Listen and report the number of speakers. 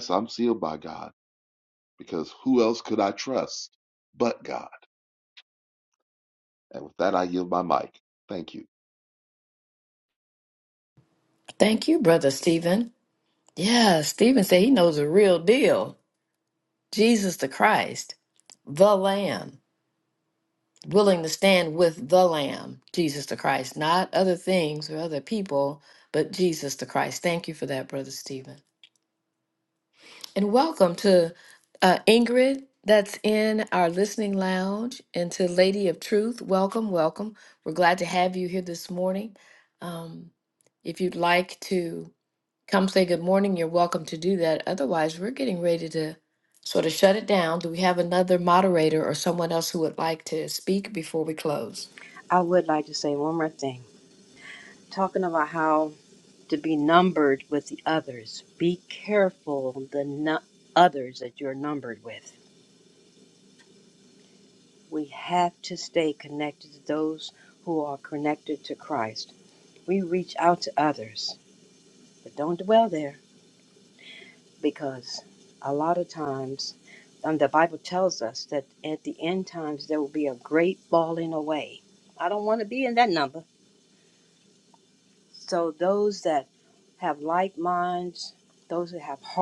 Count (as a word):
three